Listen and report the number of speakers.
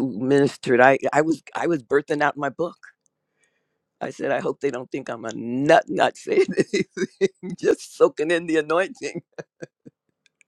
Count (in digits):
1